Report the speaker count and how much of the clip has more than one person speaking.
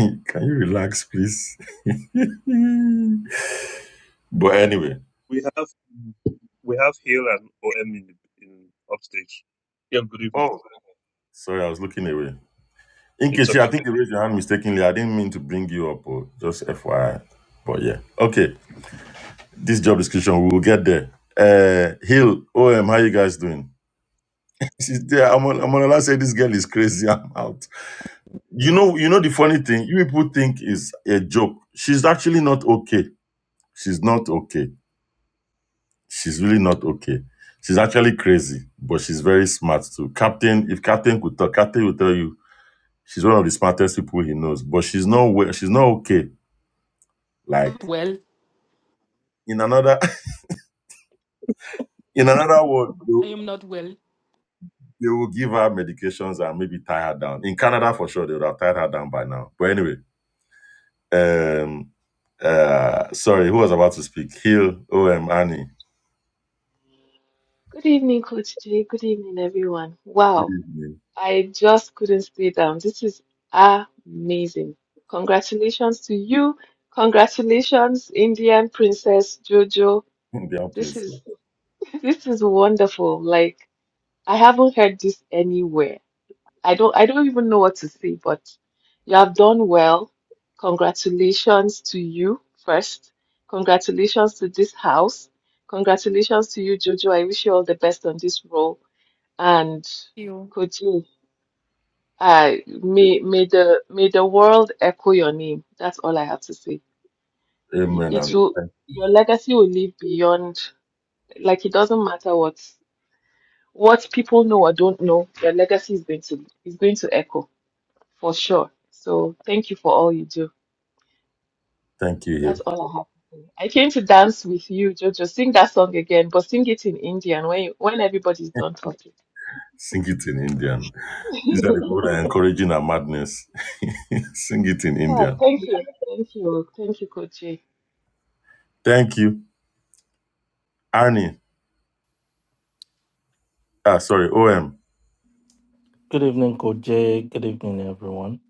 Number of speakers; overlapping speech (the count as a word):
five, about 1%